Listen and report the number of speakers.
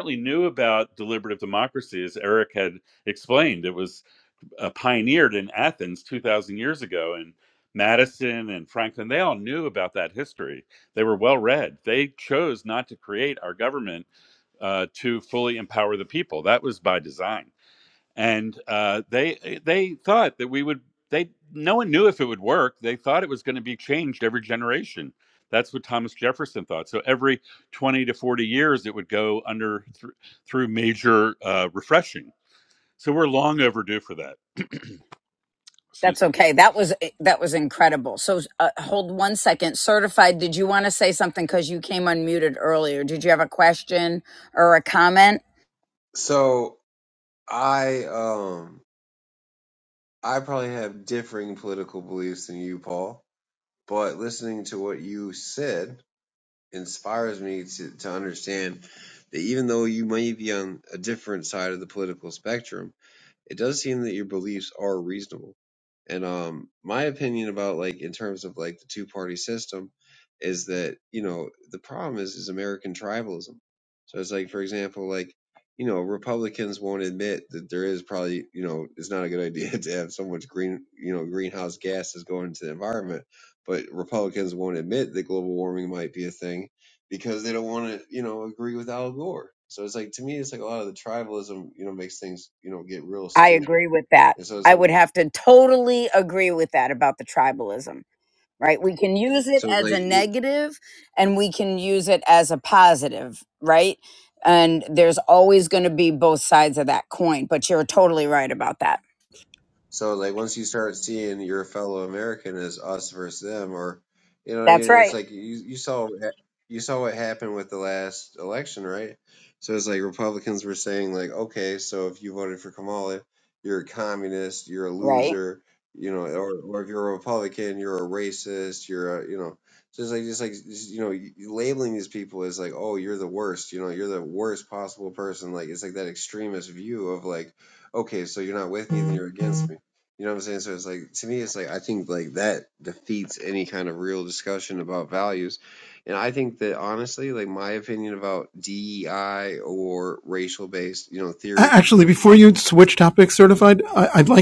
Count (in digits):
4